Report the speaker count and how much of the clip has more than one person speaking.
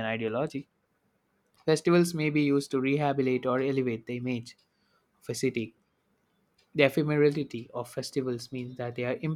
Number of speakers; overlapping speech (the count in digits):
1, no overlap